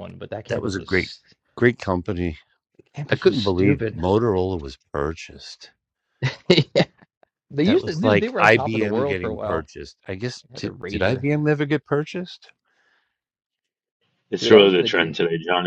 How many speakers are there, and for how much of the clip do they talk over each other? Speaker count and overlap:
3, about 31%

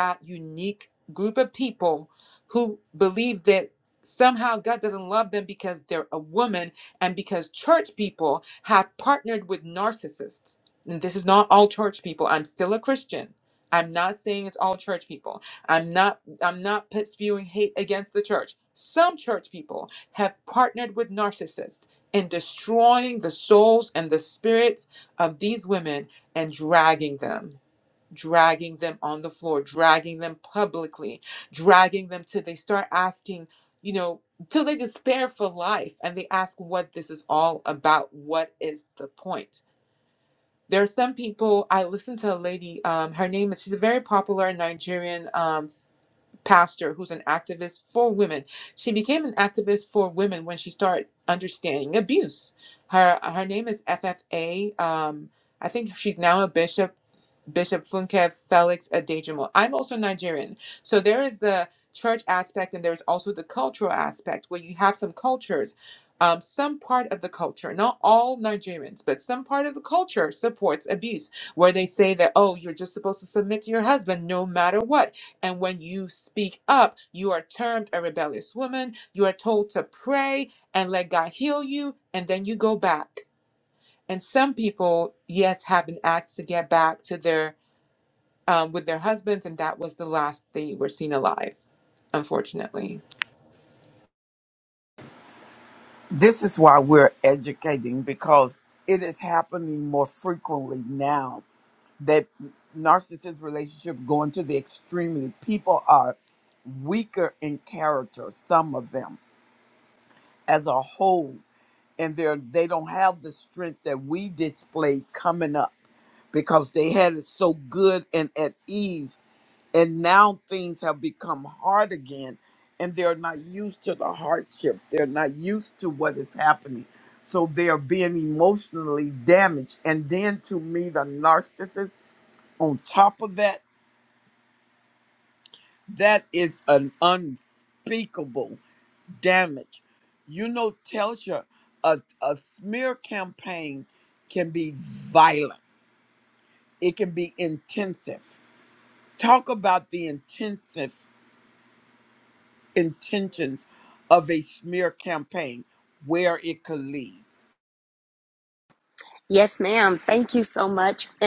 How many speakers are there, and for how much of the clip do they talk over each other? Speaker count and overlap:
3, no overlap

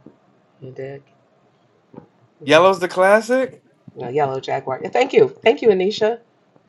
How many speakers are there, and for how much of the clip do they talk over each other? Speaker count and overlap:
2, about 2%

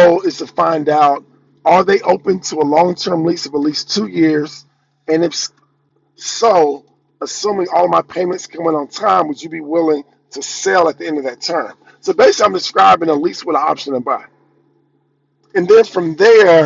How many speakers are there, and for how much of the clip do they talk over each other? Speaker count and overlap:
1, no overlap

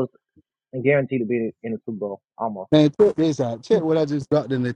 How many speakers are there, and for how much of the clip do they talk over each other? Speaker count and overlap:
2, no overlap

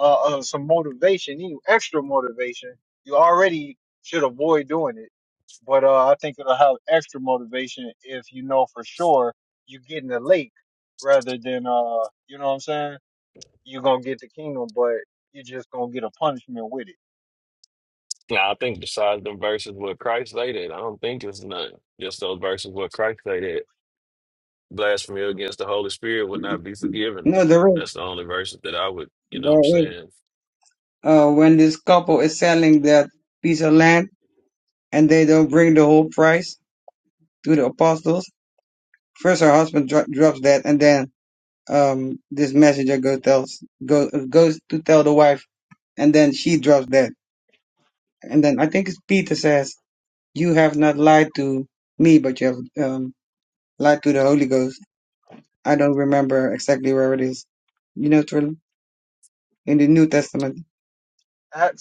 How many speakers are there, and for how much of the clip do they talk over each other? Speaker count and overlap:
3, about 1%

